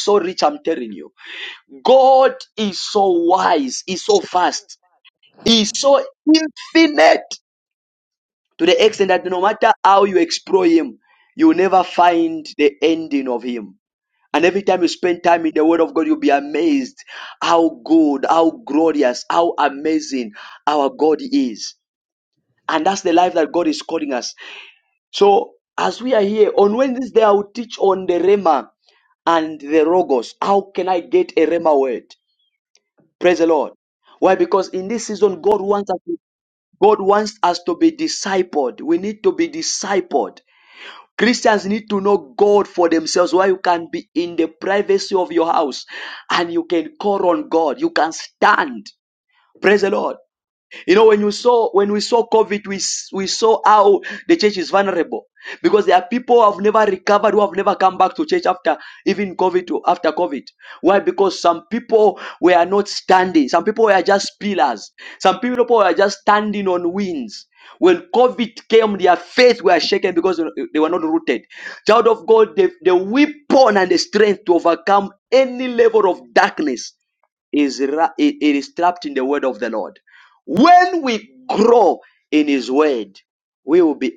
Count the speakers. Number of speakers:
one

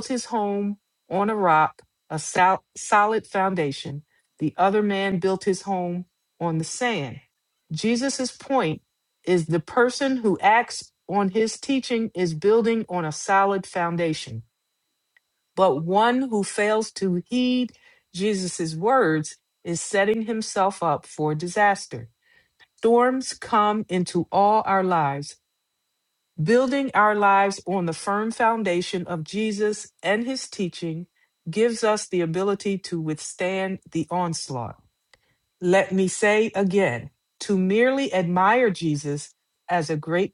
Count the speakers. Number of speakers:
one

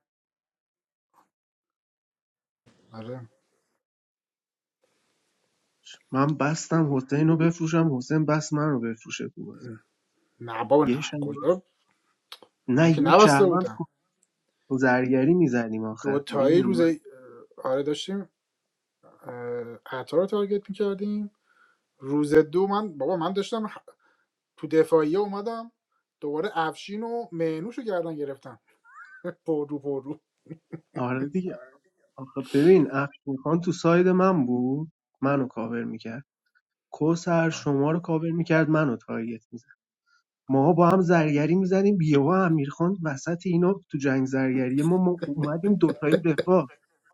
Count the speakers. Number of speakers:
two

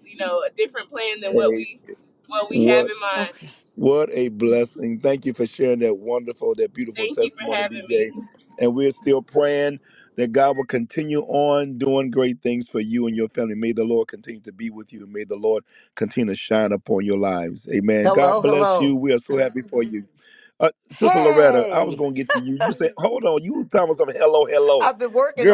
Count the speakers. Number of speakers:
three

